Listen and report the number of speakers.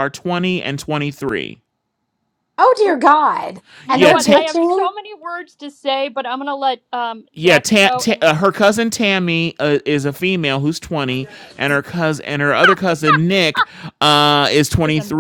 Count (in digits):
3